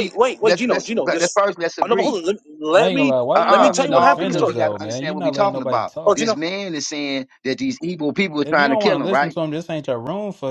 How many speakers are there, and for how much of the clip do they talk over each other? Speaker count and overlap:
3, about 53%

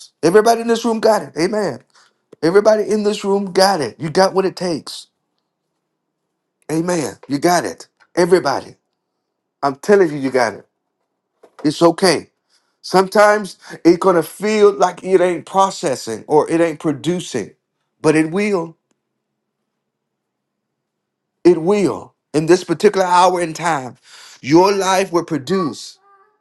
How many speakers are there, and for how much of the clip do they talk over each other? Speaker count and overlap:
1, no overlap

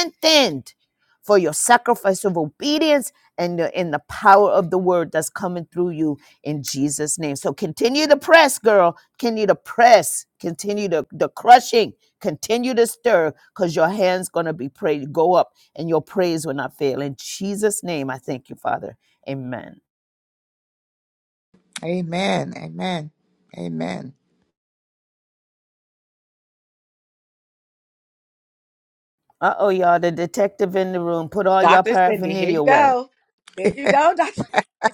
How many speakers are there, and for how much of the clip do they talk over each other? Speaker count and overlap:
3, about 5%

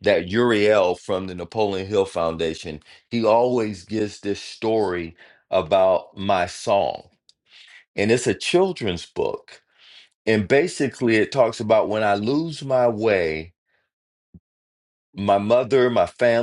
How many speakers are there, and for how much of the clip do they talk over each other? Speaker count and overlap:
1, no overlap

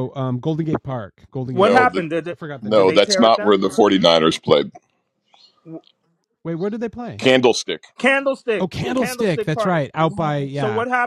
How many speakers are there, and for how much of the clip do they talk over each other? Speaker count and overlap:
3, about 22%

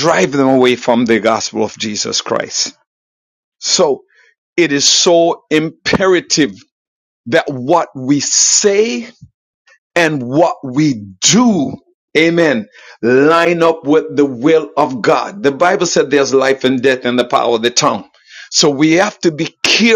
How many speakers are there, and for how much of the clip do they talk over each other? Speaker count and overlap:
1, no overlap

